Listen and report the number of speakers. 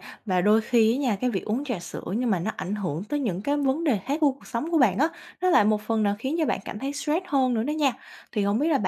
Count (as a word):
one